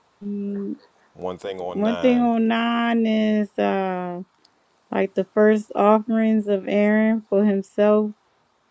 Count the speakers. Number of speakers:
2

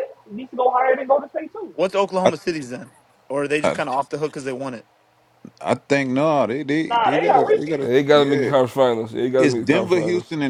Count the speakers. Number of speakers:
4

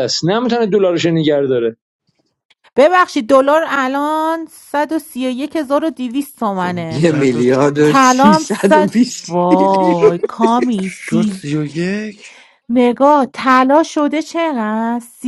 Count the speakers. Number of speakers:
4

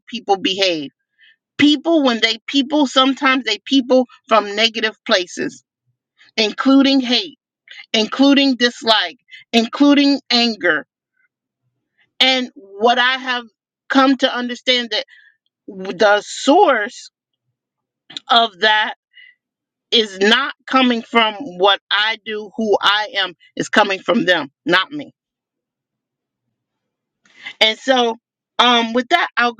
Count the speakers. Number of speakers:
1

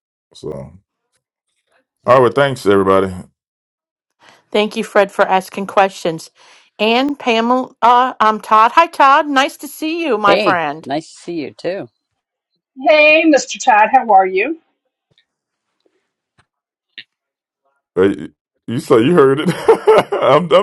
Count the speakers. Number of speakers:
4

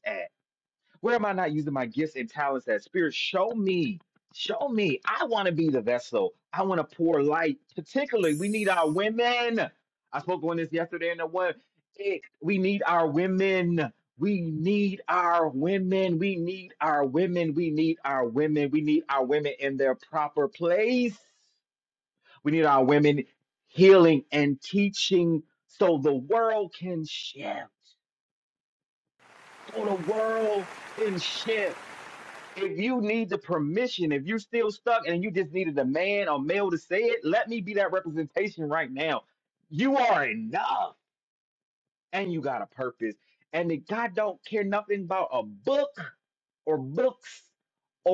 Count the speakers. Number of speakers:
1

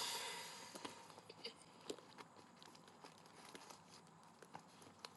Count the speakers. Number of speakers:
0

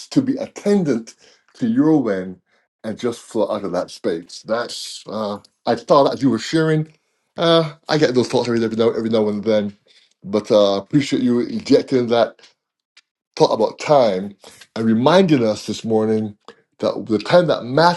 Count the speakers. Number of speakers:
1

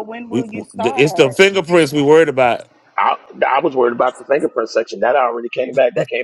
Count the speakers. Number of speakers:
3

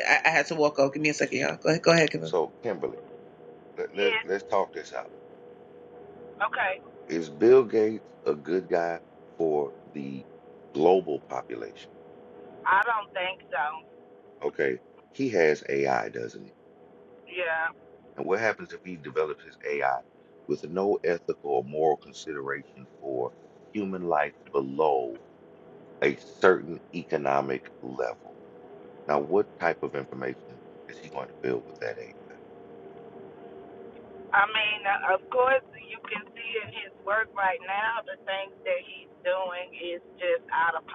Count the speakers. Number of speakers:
3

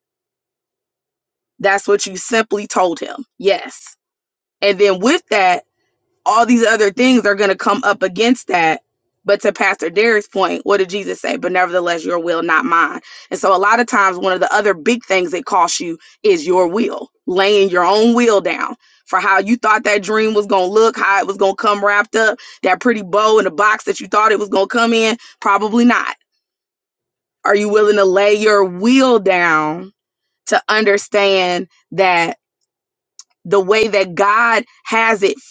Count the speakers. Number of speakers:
1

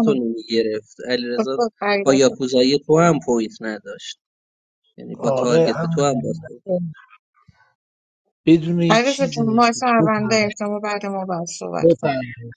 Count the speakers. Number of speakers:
3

